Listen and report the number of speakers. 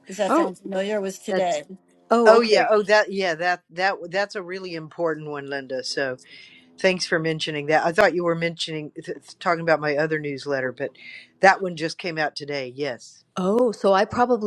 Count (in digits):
3